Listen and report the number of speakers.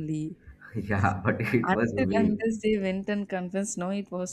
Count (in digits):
2